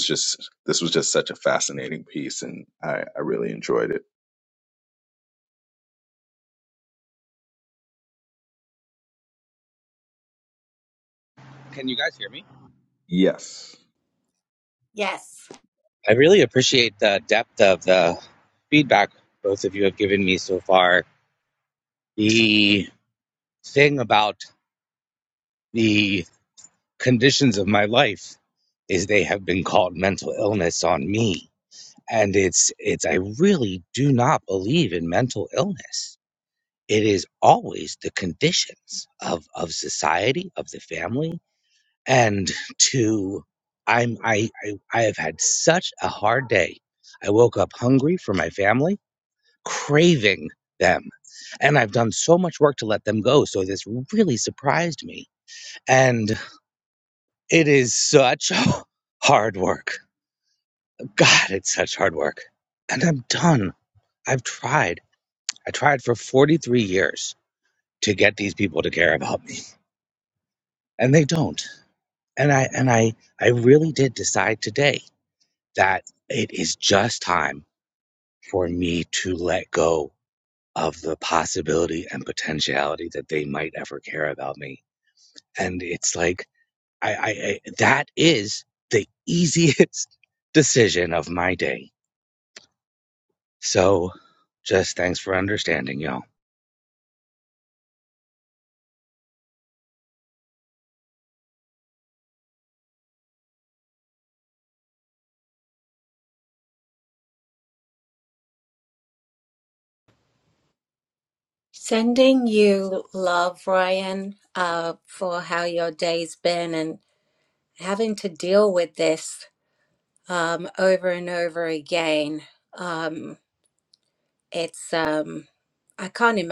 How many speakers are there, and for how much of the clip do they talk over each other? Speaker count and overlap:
3, no overlap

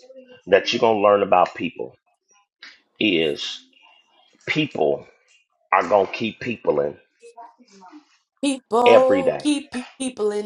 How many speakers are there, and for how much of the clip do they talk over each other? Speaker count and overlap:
2, about 6%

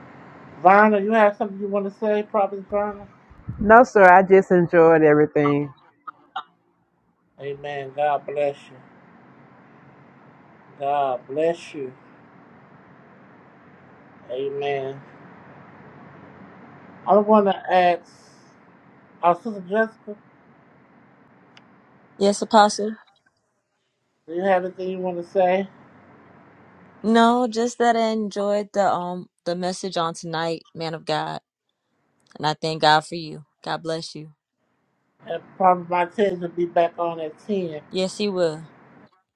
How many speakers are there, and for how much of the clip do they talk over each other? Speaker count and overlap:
3, no overlap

